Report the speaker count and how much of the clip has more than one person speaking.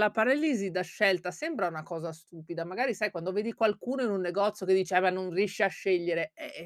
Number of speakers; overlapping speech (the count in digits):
1, no overlap